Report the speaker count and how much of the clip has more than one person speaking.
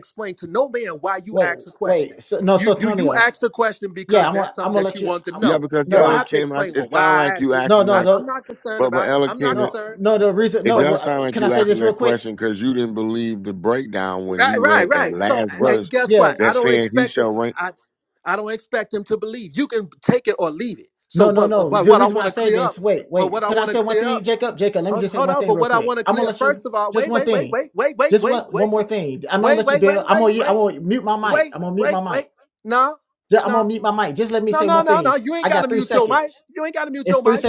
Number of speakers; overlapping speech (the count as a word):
three, about 57%